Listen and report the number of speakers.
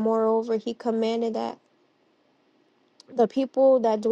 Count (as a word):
one